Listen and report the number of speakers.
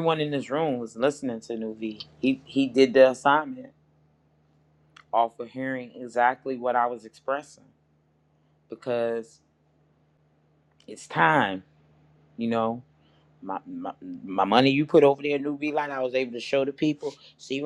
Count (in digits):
1